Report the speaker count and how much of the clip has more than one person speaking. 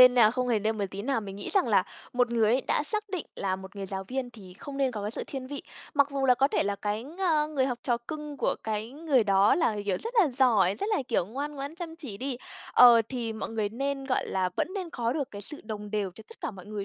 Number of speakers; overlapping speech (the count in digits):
1, no overlap